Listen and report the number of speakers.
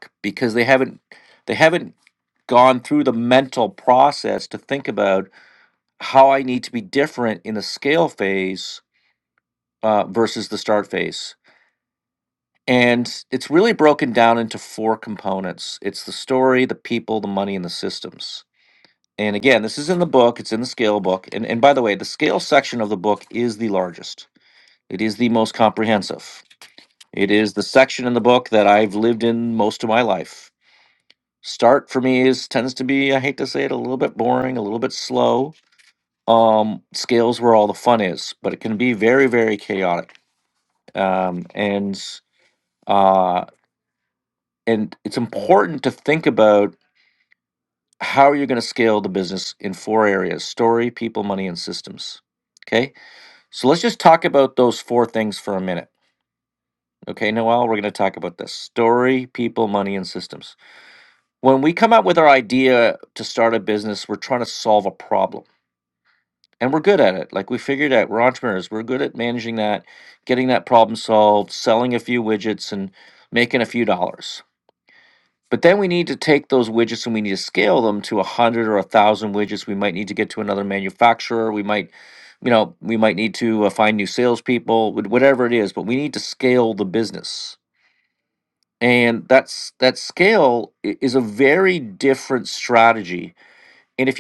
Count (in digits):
1